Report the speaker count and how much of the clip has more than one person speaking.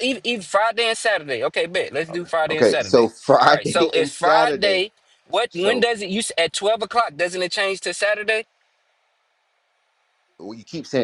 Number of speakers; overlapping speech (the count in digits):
2, about 23%